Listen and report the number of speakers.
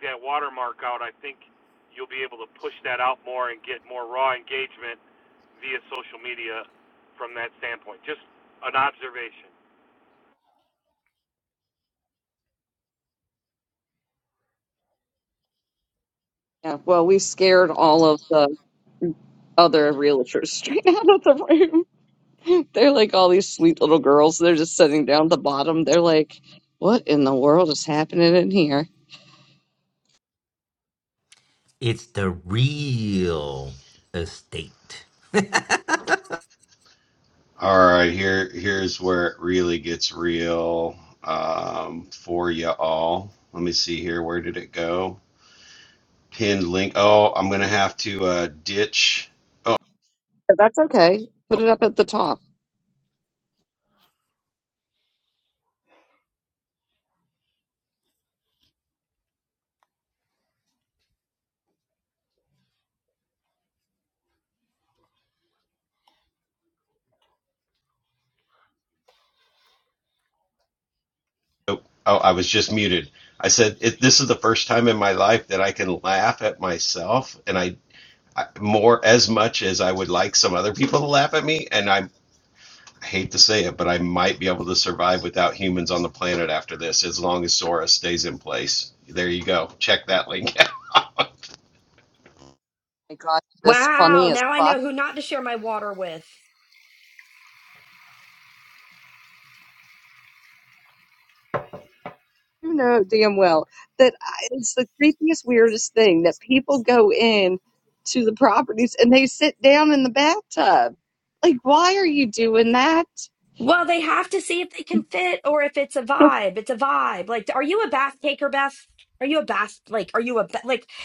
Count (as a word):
five